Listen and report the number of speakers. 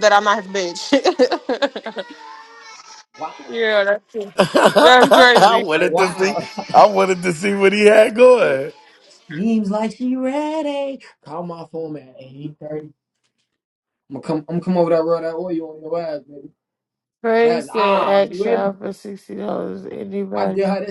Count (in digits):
4